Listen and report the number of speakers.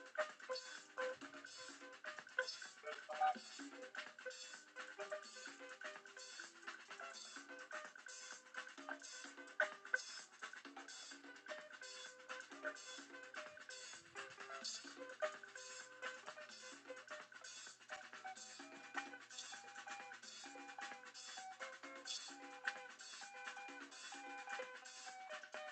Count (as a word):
zero